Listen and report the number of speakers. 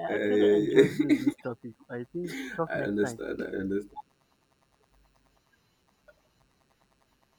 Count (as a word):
two